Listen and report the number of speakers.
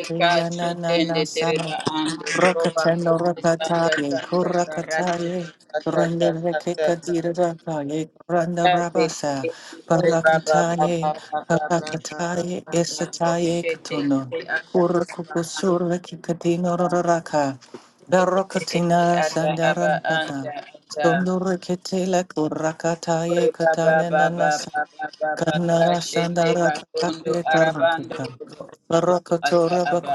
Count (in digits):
2